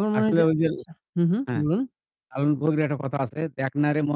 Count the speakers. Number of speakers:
2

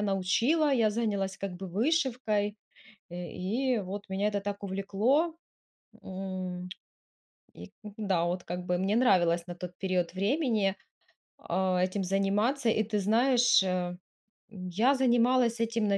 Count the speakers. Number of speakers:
1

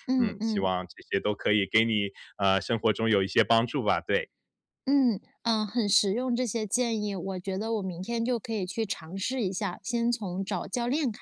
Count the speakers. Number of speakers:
2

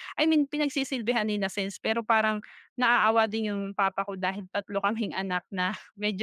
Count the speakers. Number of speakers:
1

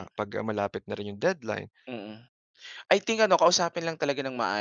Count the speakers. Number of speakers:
2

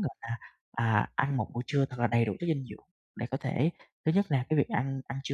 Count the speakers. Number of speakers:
1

